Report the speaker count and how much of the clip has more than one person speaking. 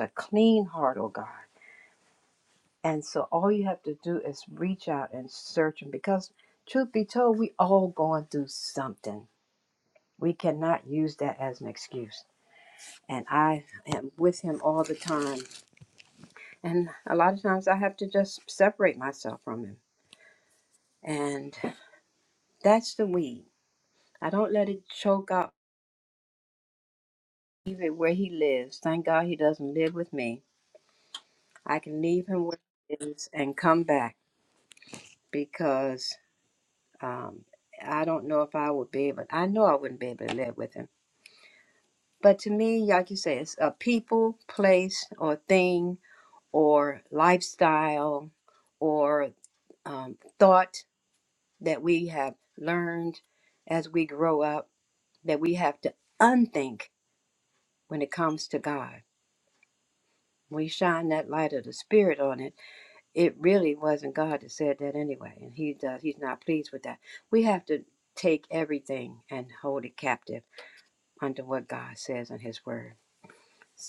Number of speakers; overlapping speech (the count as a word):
one, no overlap